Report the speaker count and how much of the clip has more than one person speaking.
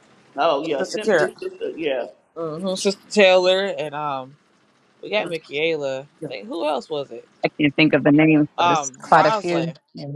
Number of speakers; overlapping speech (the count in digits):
3, about 19%